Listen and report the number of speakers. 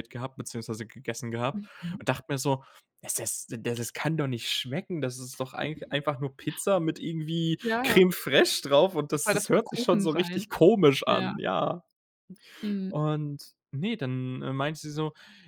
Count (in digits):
2